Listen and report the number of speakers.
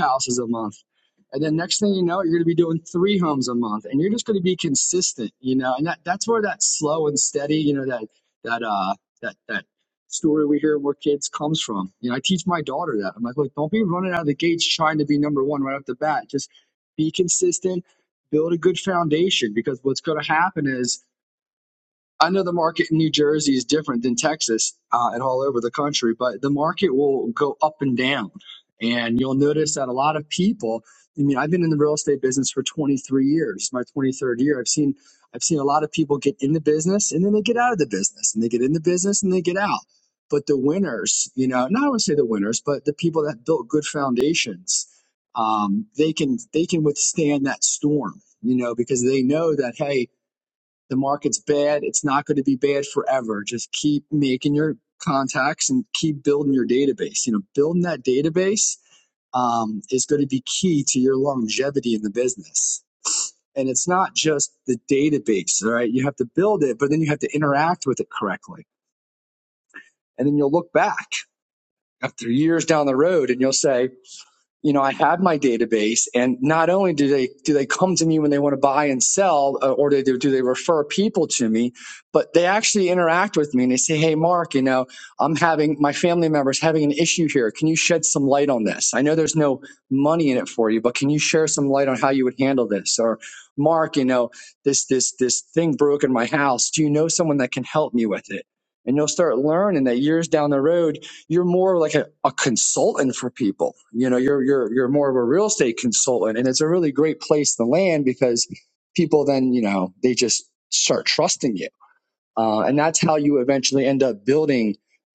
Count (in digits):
1